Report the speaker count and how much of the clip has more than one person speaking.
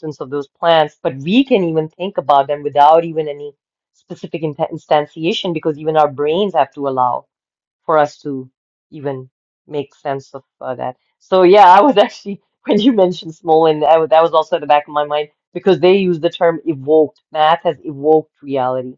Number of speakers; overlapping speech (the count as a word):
one, no overlap